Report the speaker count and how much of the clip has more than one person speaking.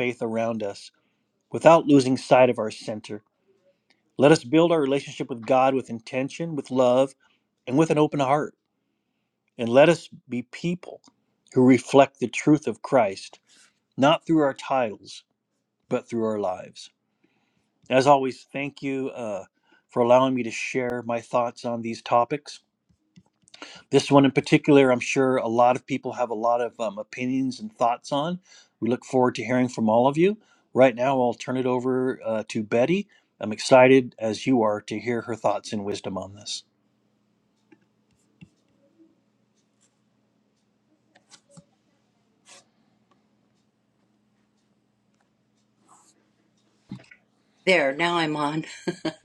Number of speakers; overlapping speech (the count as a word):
two, no overlap